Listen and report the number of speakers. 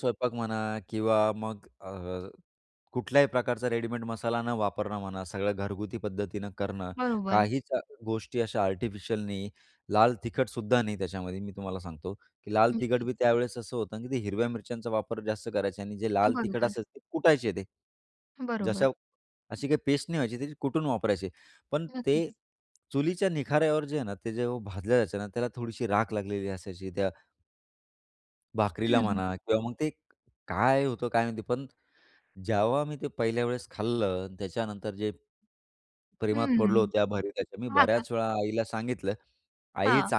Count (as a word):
two